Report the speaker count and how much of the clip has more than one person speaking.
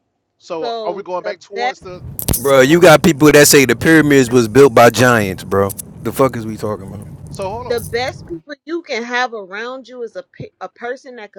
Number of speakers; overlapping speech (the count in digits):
3, about 15%